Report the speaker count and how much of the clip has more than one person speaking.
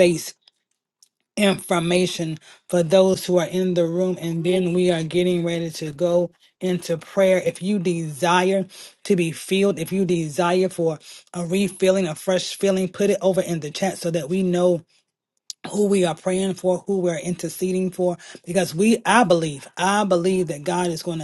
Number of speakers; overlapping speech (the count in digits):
1, no overlap